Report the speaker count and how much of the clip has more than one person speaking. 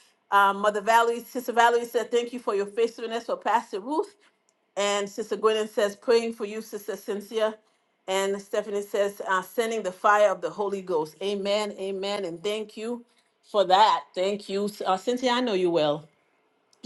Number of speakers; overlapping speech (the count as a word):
one, no overlap